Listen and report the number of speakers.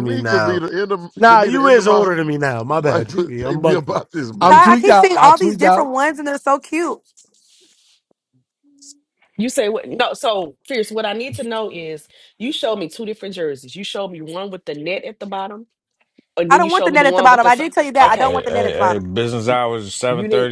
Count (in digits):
5